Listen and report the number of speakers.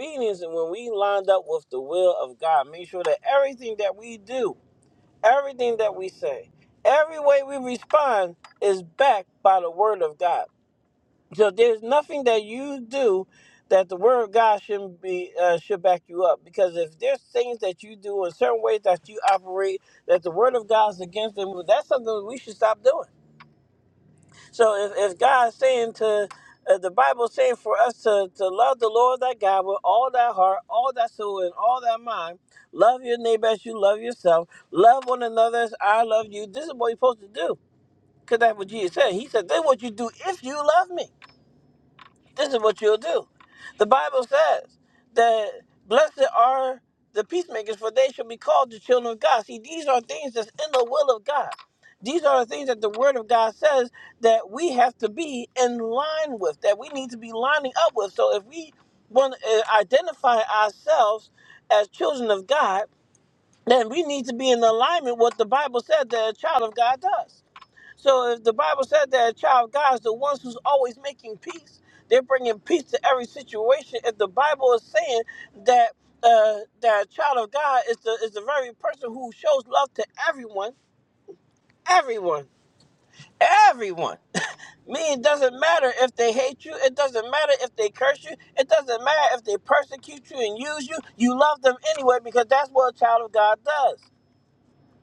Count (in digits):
1